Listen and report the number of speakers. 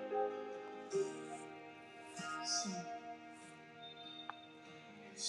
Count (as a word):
zero